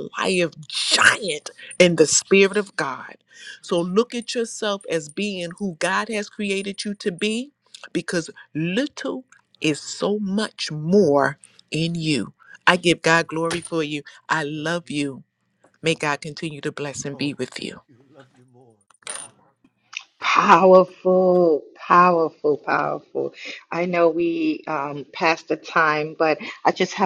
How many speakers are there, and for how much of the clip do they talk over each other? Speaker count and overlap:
2, no overlap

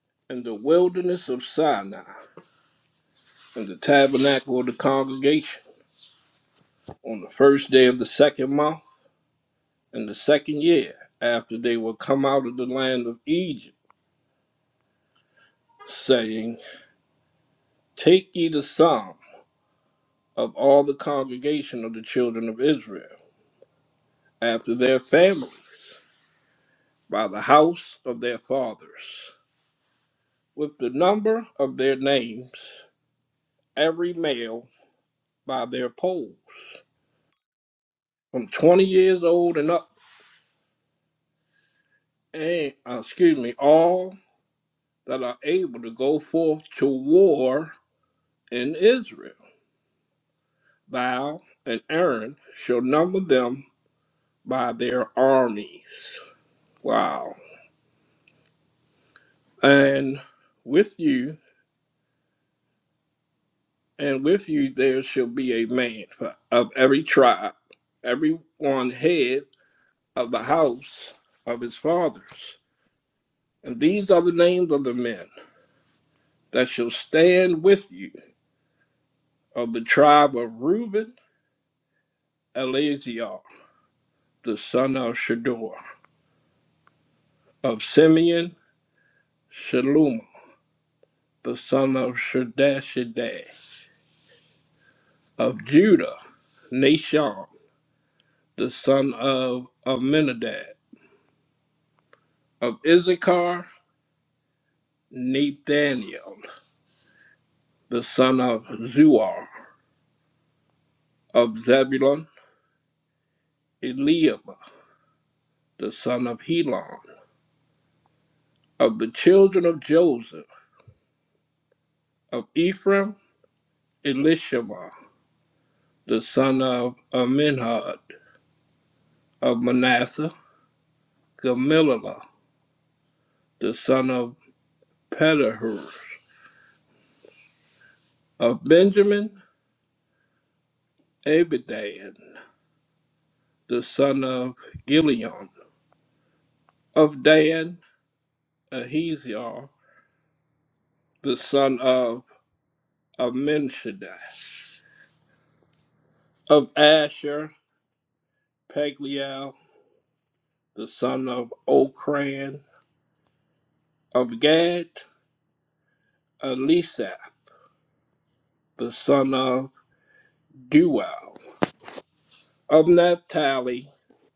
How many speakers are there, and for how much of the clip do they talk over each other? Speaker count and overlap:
1, no overlap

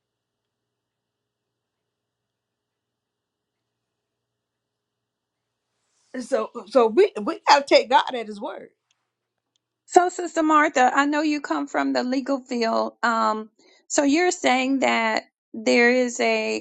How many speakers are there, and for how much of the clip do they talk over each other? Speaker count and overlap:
2, no overlap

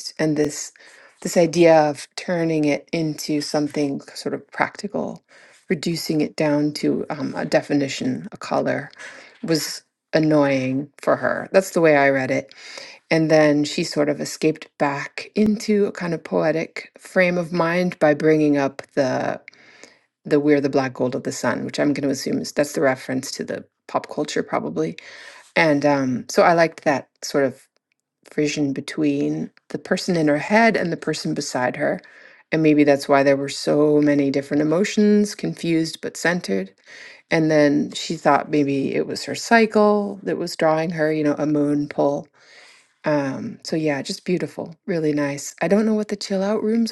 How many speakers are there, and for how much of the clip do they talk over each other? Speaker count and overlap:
1, no overlap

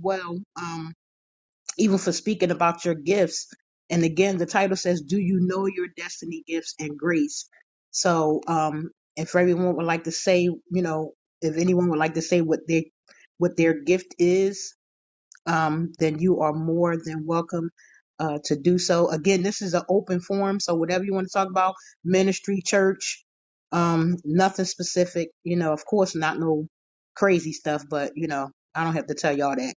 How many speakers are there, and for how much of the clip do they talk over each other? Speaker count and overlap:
1, no overlap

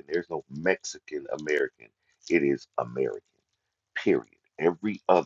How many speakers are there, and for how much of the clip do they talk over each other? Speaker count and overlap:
1, no overlap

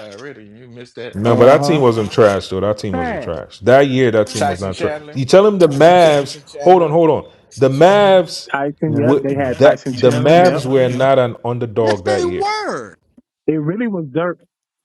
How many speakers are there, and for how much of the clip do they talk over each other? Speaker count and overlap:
4, about 32%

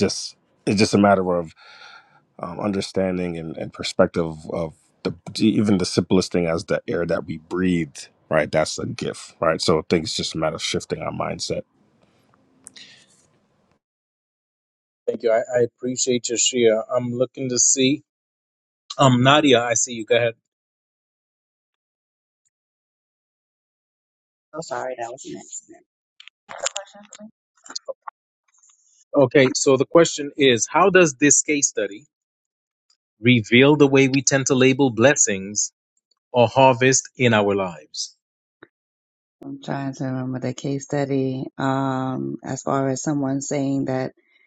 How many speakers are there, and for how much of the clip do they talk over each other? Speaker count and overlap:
3, no overlap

